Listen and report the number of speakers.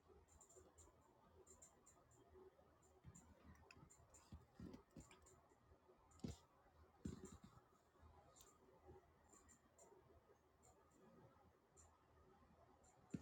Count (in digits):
0